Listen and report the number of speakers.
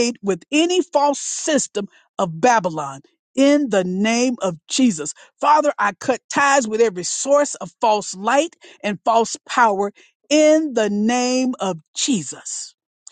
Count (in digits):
1